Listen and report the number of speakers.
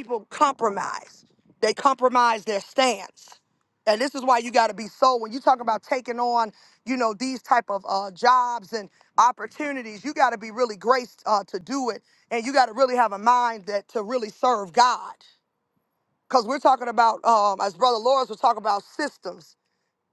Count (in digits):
1